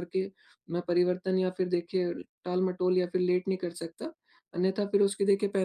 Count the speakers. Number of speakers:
1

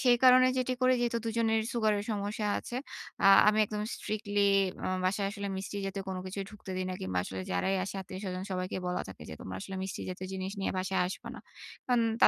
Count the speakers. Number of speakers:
1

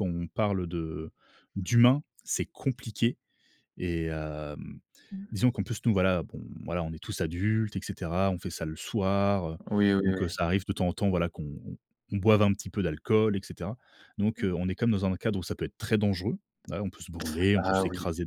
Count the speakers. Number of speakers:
2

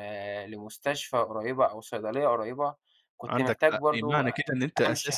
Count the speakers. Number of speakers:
2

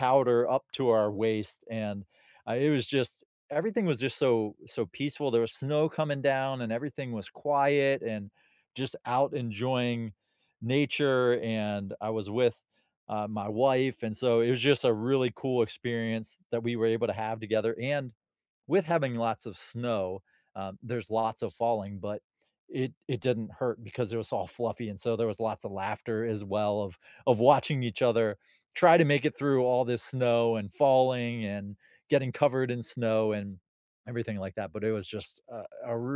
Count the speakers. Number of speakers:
1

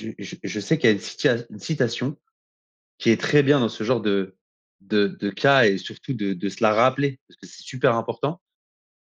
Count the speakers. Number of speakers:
1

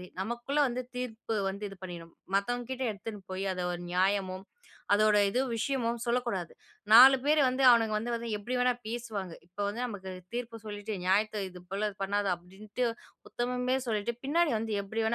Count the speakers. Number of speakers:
1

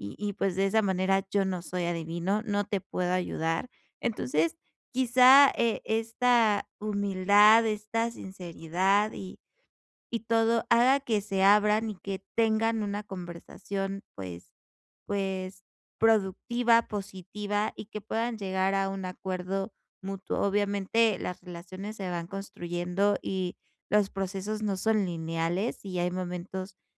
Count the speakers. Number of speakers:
1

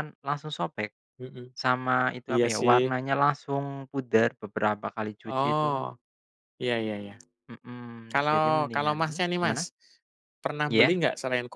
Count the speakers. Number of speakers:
2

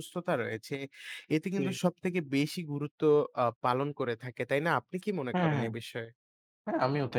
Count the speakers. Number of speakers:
2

